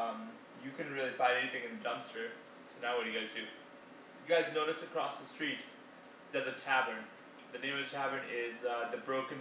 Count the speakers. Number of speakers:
1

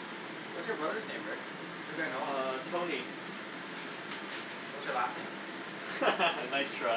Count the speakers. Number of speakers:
2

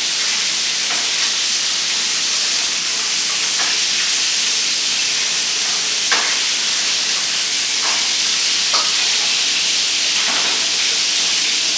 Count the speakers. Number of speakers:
0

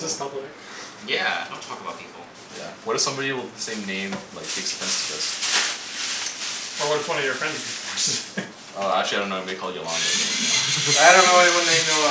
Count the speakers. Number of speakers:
4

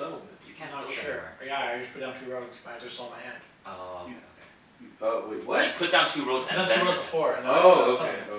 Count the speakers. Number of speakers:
3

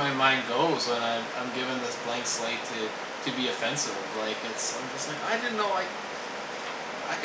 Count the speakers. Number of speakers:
1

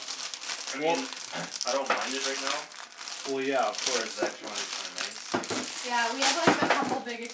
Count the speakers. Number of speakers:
3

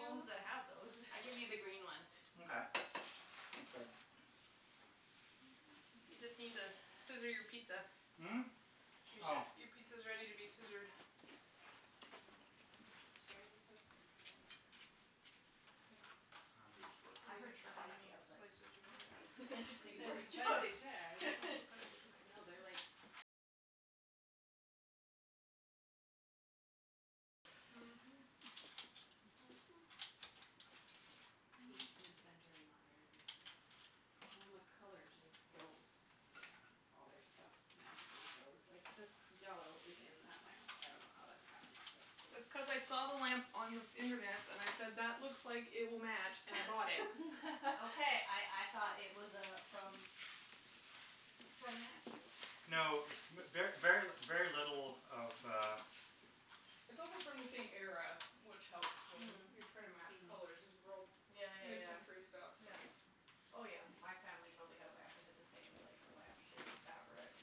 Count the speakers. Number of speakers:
4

